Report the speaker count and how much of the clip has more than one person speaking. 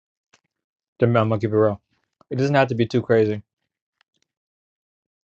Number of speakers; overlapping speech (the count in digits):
1, no overlap